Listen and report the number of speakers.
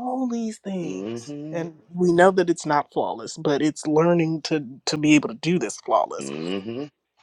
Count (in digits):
2